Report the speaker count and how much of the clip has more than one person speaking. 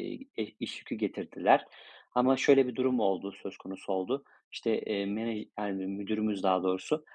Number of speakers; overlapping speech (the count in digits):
1, no overlap